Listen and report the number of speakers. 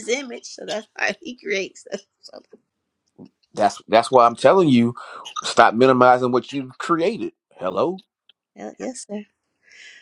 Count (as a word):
two